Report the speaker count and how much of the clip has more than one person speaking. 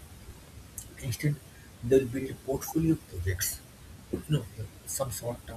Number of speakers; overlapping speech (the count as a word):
one, no overlap